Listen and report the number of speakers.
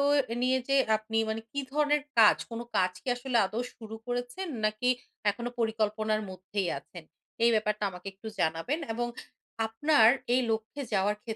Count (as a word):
one